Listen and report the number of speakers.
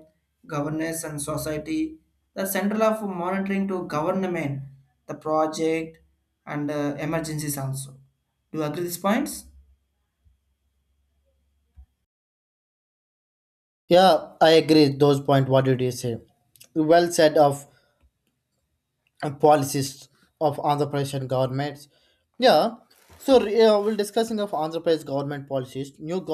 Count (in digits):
2